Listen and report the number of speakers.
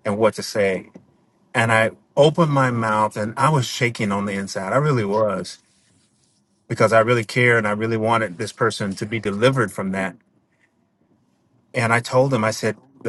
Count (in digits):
1